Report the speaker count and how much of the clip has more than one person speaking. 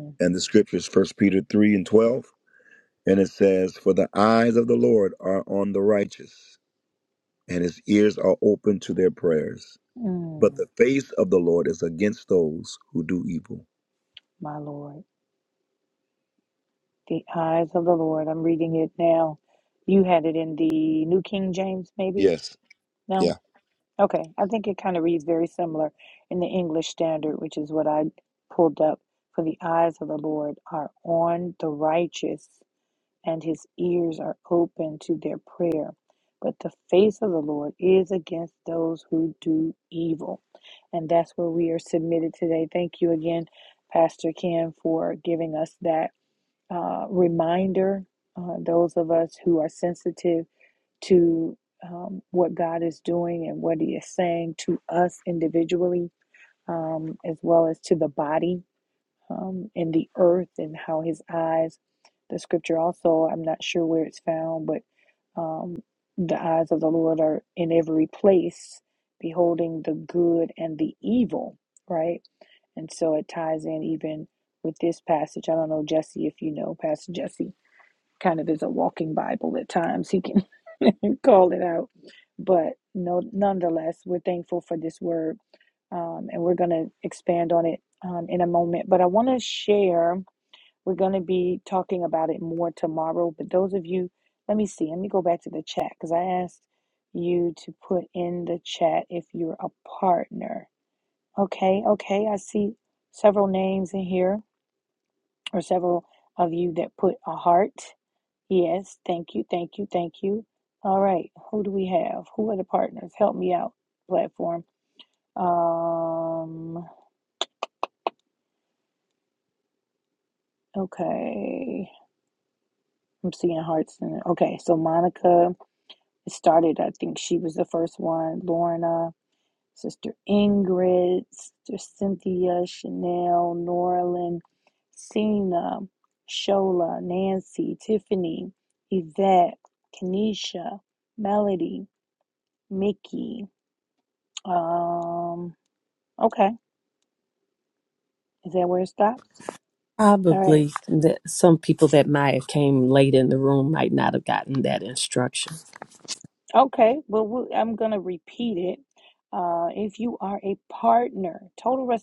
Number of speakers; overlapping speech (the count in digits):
3, under 1%